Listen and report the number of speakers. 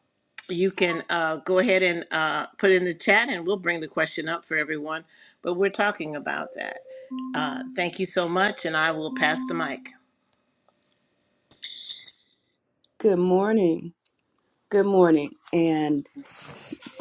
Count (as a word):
two